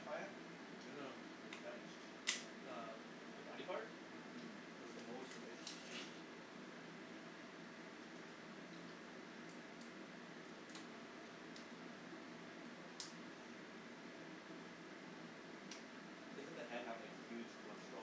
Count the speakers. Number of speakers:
two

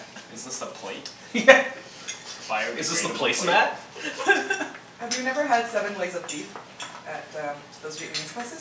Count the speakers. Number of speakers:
three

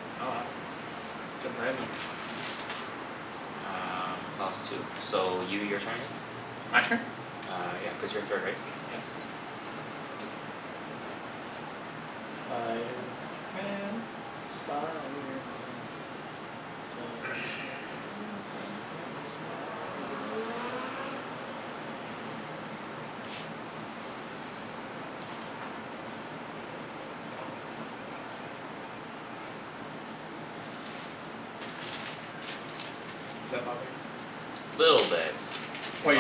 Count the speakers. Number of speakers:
two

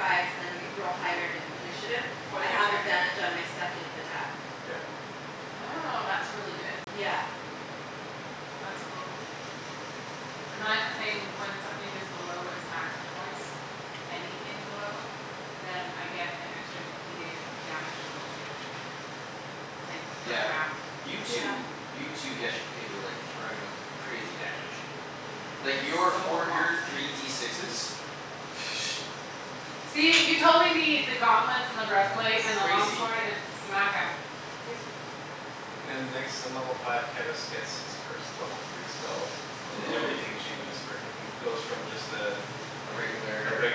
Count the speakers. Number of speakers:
four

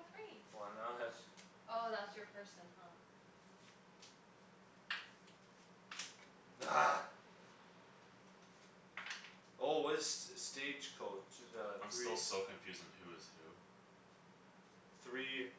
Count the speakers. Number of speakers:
three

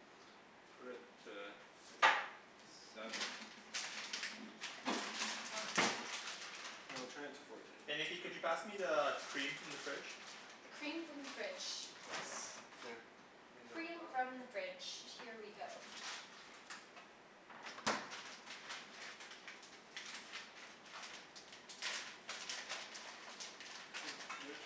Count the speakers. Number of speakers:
three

